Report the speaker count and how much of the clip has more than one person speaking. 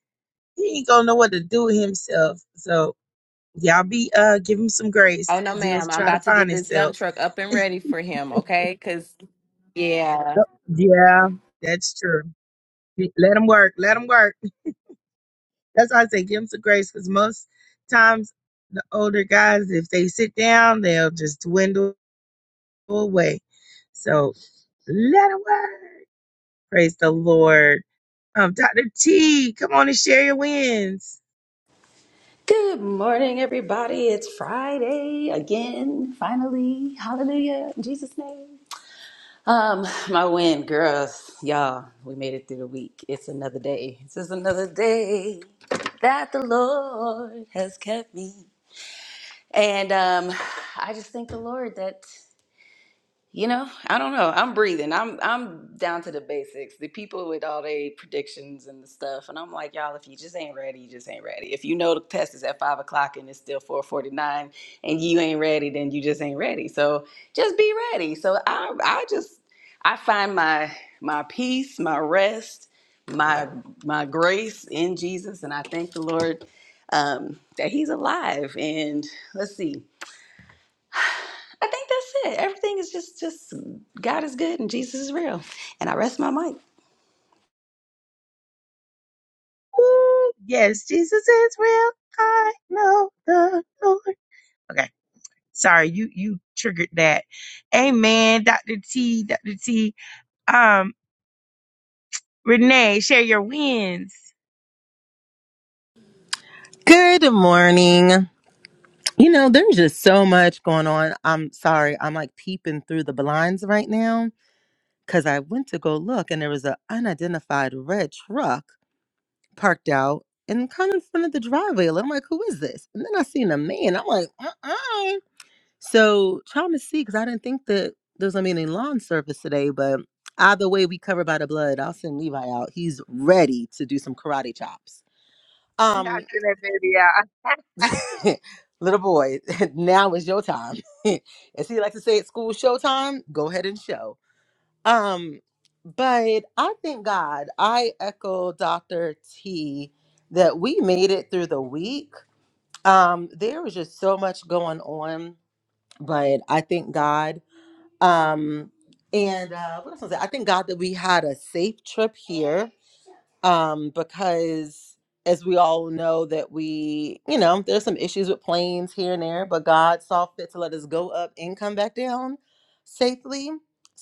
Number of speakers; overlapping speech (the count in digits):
4, about 1%